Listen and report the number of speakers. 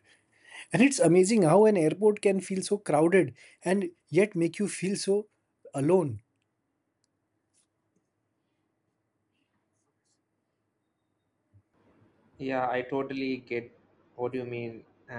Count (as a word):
two